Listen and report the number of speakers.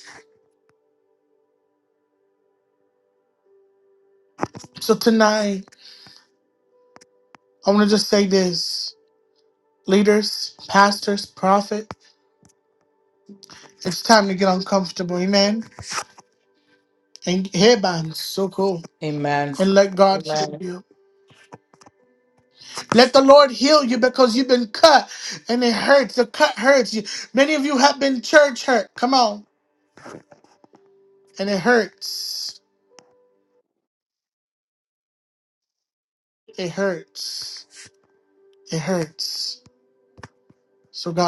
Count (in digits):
2